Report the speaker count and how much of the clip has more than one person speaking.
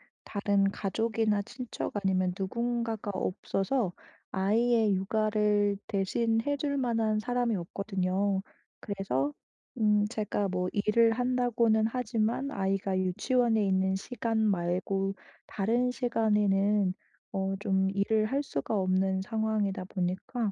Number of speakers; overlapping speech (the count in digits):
1, no overlap